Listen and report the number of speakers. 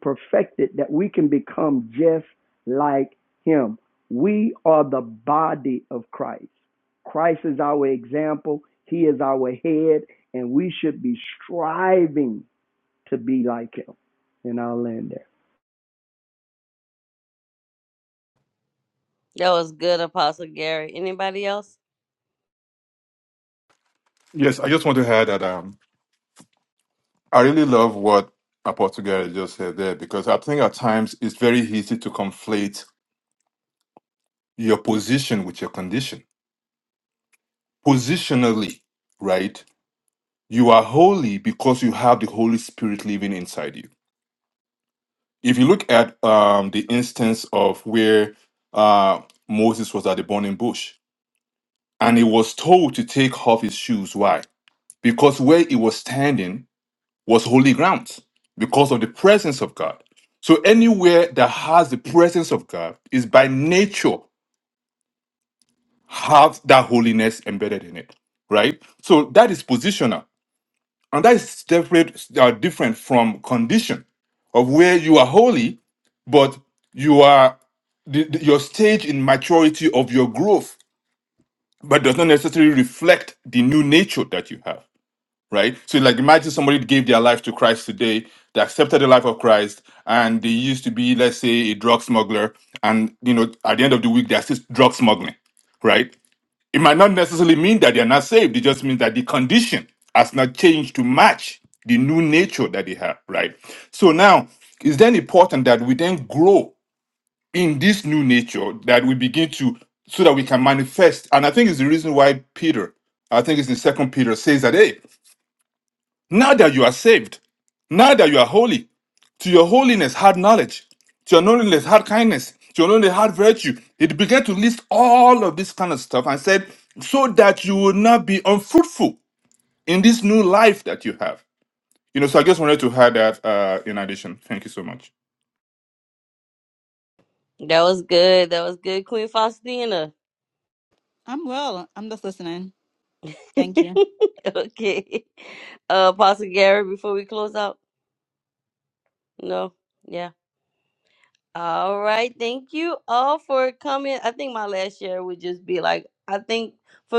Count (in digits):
4